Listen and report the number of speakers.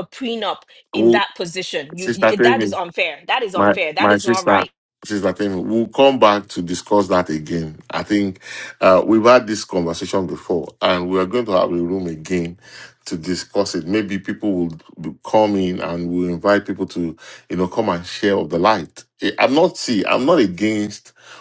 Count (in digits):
2